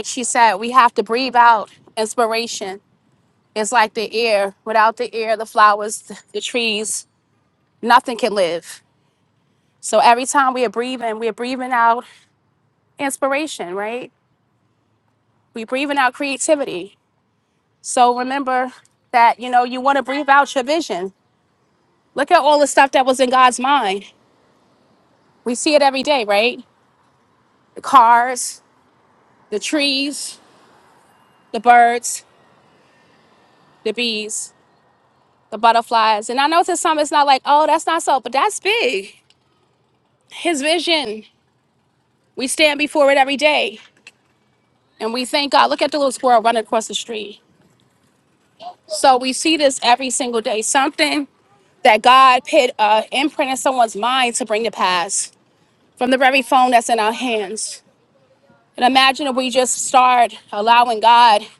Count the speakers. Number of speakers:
1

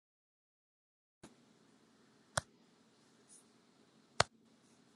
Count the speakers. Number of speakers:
0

